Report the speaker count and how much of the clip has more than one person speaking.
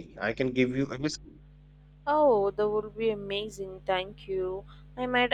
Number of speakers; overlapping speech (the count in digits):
2, no overlap